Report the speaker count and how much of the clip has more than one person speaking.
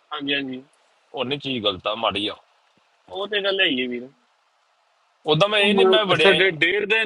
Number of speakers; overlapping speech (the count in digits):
3, about 14%